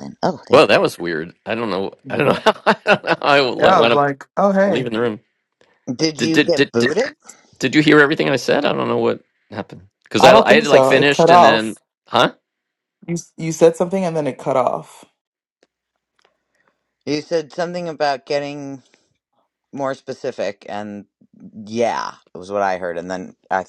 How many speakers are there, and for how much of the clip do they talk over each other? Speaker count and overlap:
3, about 14%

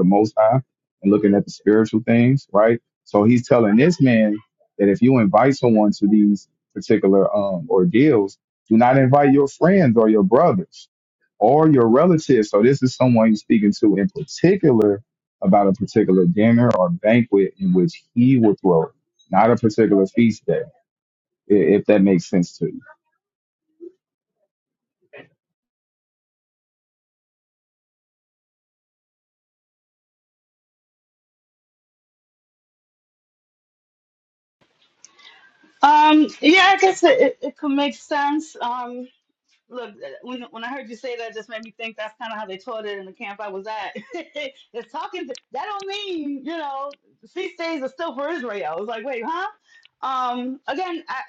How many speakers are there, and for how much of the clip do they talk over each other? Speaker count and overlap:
2, no overlap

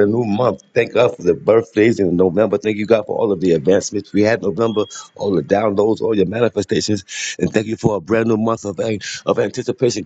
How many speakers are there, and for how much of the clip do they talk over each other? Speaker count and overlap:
1, no overlap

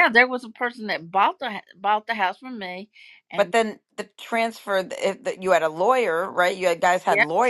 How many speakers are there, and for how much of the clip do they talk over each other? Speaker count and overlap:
2, about 4%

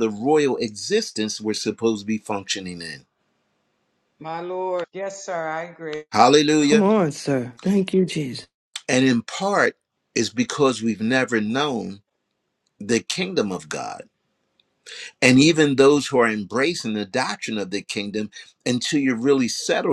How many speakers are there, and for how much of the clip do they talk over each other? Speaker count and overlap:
3, about 1%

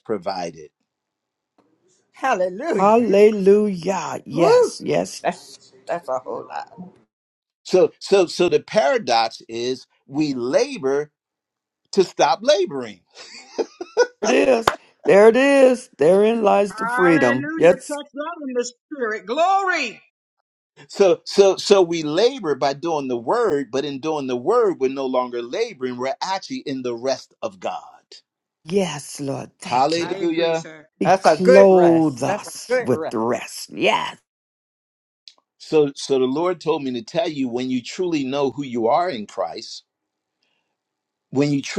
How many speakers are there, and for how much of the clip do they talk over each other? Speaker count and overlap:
4, about 11%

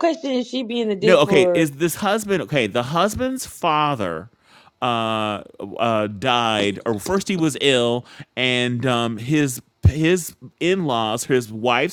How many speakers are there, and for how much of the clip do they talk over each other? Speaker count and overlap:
2, about 6%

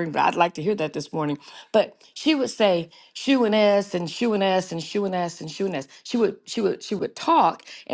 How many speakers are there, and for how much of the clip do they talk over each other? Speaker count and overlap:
1, no overlap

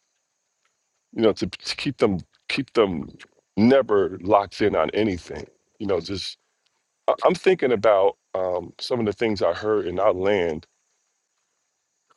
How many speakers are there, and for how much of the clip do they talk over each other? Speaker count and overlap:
1, no overlap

